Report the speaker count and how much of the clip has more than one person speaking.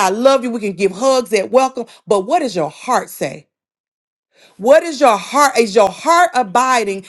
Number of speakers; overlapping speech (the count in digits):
1, no overlap